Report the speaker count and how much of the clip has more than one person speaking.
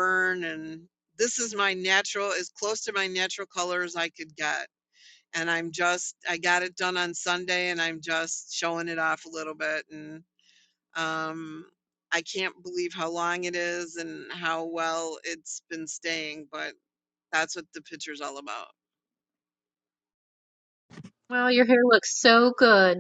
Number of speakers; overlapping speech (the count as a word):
two, no overlap